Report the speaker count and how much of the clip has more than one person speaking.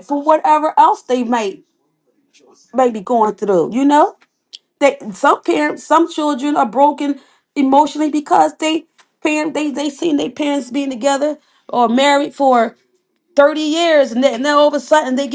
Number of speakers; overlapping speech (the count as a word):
one, no overlap